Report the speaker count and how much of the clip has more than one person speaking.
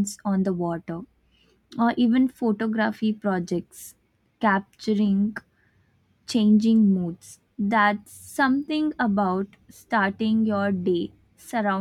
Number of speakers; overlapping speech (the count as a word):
one, no overlap